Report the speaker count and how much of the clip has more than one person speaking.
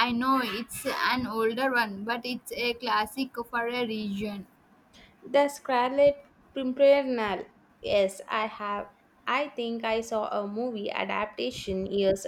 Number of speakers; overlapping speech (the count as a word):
two, no overlap